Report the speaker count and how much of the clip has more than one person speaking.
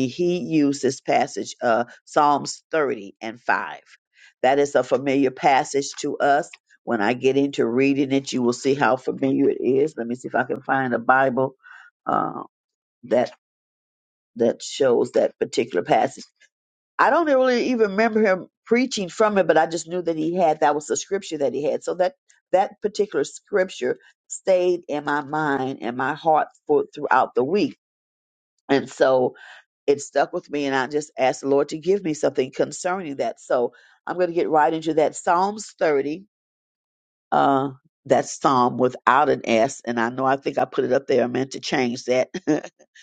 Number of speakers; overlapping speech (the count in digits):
1, no overlap